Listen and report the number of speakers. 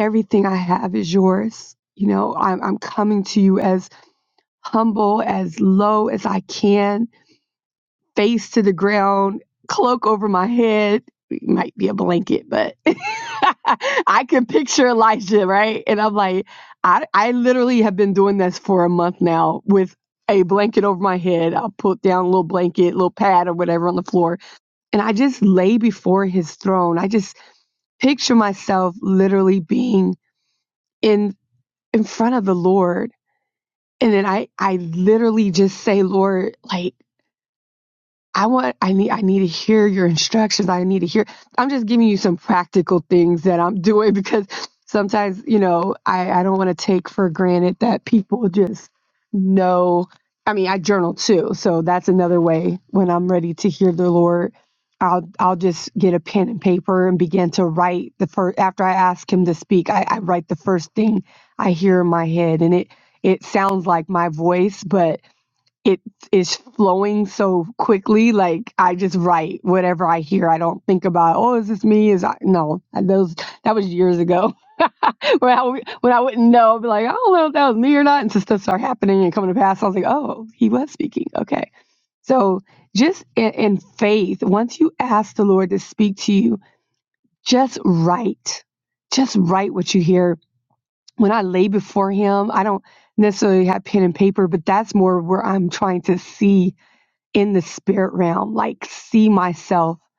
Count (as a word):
one